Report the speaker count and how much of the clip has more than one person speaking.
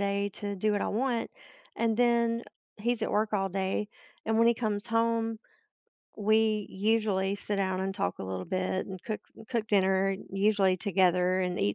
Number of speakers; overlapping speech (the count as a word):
one, no overlap